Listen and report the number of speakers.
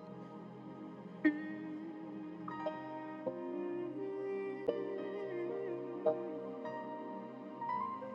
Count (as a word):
zero